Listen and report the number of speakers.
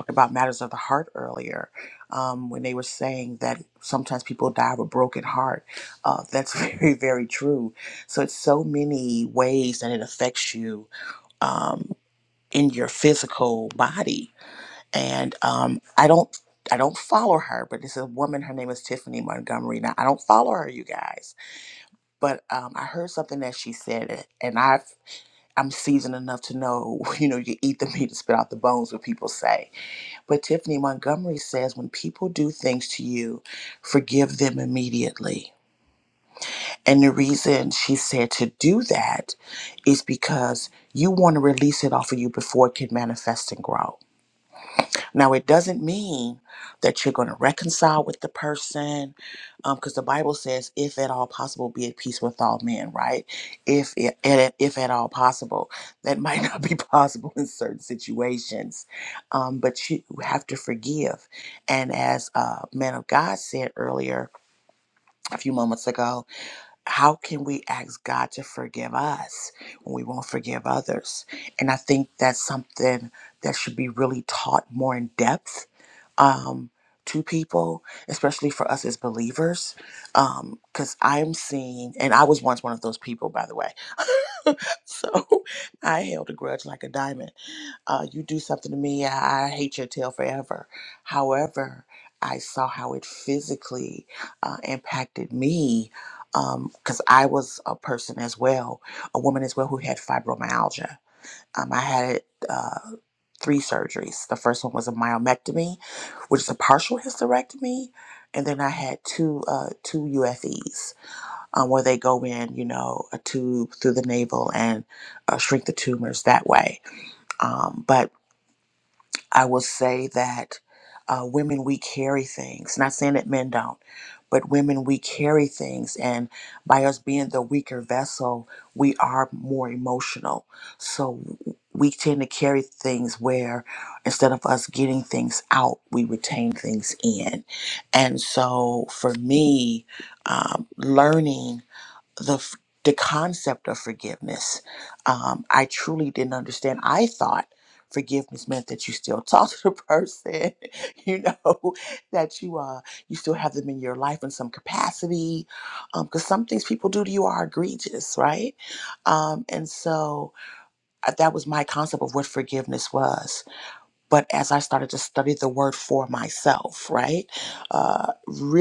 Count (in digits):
1